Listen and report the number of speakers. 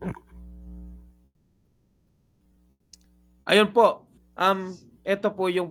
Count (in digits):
1